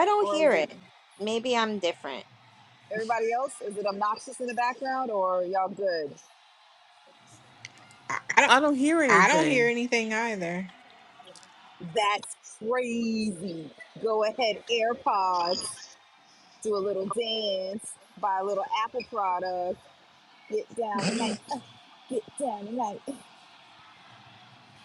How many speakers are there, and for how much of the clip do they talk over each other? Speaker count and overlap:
four, about 5%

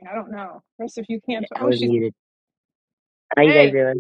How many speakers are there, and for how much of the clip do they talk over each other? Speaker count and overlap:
two, about 22%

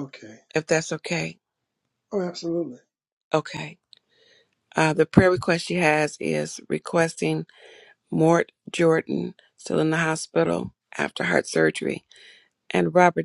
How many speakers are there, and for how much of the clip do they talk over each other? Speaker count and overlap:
two, no overlap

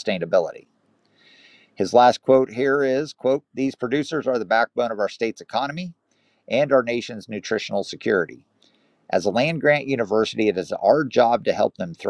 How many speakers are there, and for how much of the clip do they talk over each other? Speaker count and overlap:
one, no overlap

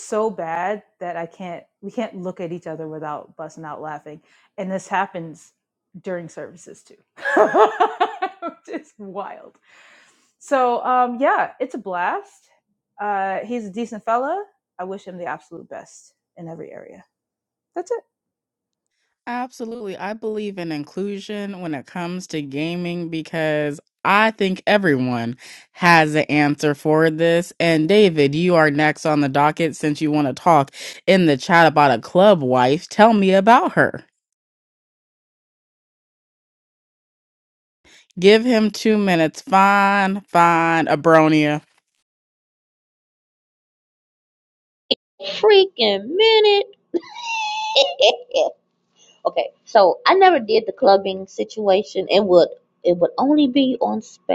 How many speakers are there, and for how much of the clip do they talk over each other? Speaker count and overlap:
three, no overlap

